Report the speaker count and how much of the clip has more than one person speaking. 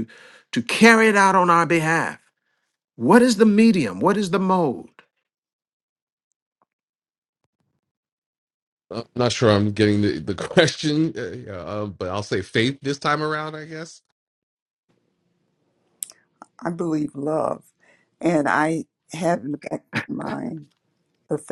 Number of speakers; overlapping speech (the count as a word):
three, no overlap